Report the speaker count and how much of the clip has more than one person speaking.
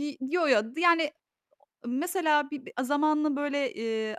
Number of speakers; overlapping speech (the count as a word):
one, no overlap